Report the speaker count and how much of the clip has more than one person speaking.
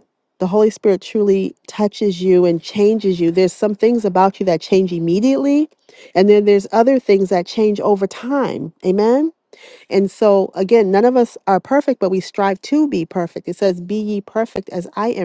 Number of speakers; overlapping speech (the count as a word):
one, no overlap